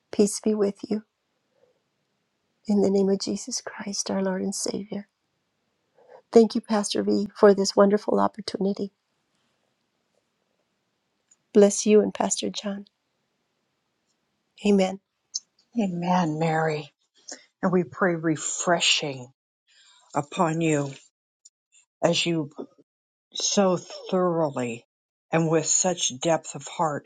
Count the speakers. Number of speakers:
2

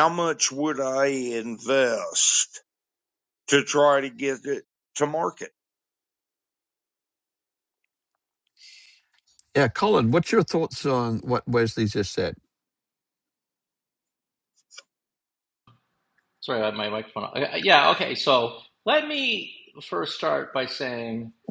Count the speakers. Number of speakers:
3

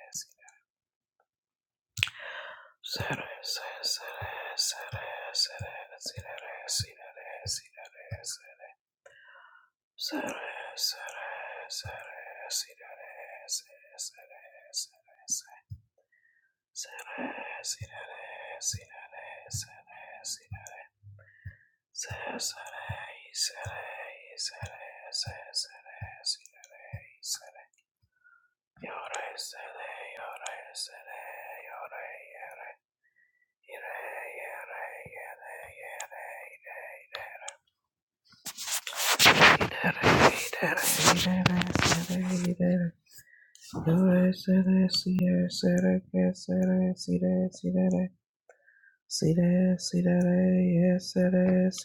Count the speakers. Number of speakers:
1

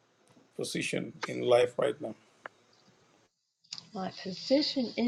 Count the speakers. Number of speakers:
2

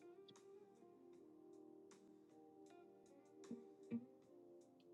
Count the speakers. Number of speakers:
0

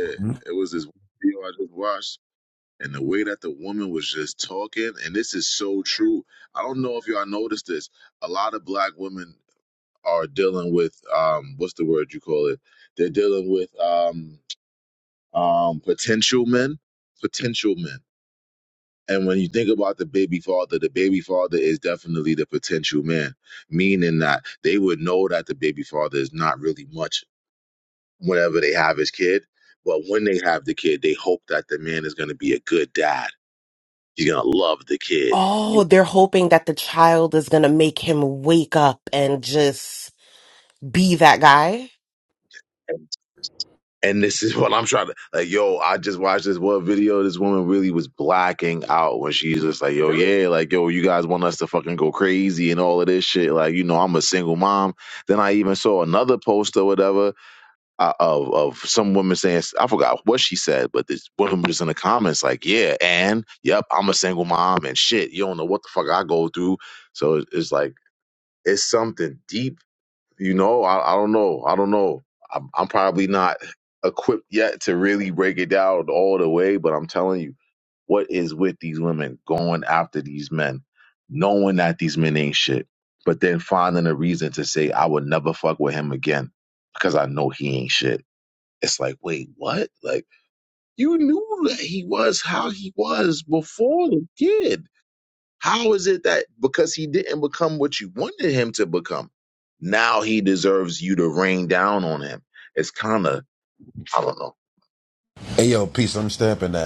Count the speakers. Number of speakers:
3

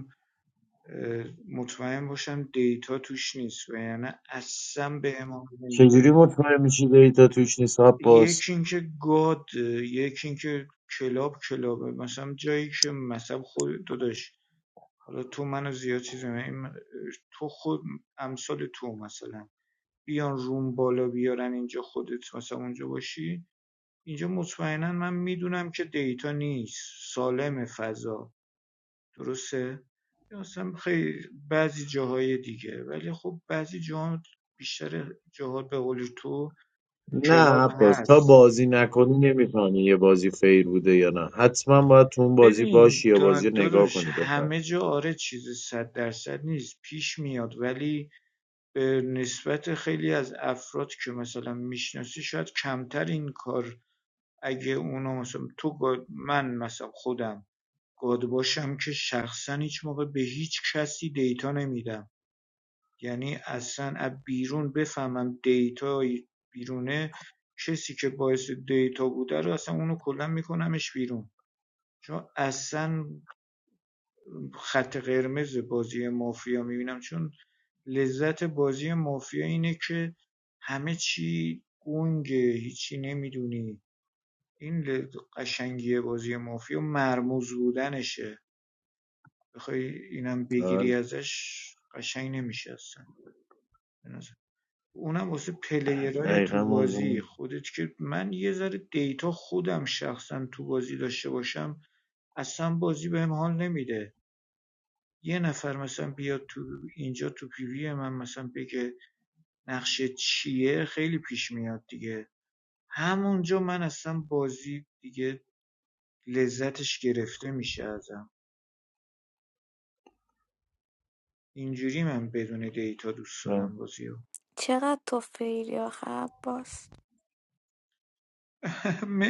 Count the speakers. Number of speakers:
3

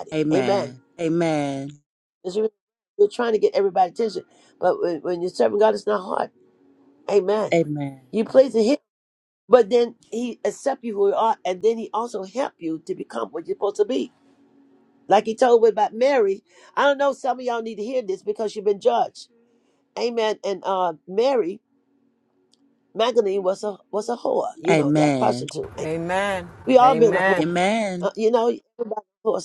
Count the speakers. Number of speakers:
3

